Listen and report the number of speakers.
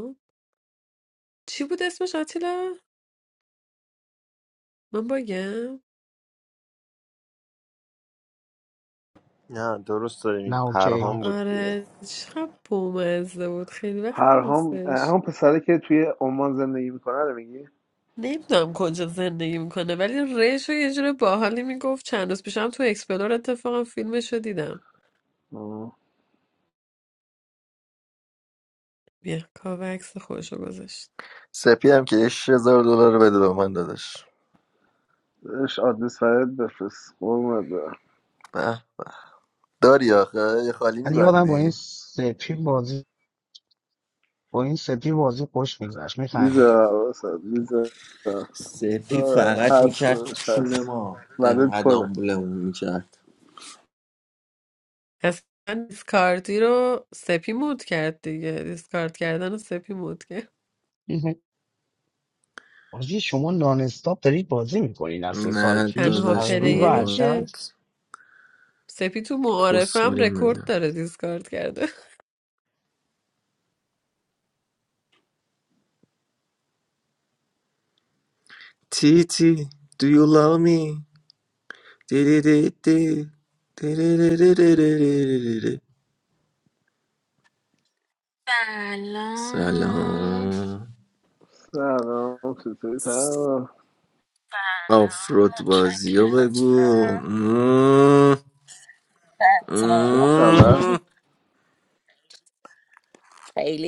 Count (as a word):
six